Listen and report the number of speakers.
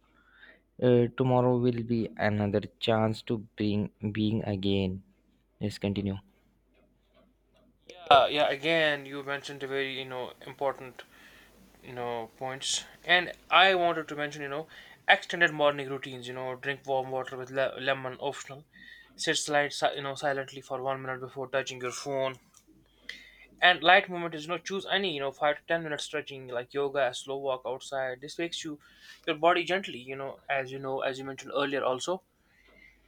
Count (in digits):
2